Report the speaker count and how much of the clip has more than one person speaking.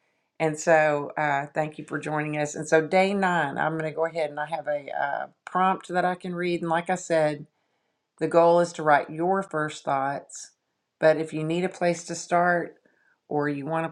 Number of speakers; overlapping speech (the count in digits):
1, no overlap